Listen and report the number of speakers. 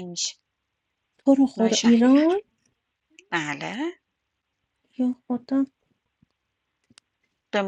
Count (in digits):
2